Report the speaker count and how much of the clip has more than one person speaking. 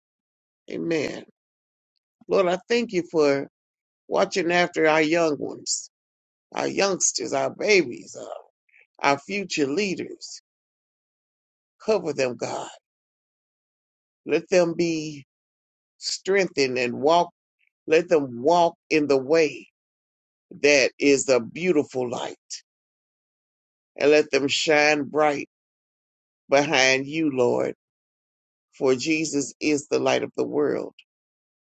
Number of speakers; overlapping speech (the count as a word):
one, no overlap